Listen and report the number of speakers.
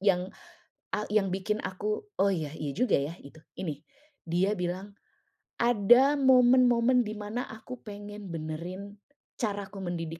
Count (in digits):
1